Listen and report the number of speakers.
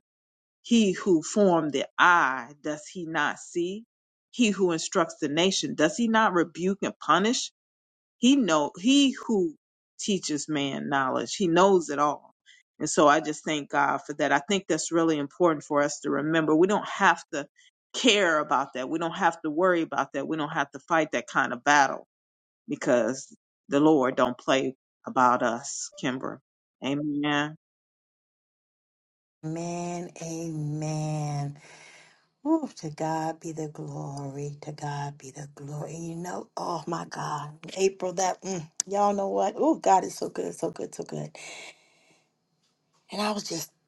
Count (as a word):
two